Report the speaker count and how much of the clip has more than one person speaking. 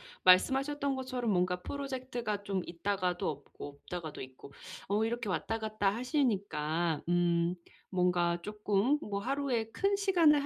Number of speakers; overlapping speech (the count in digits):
1, no overlap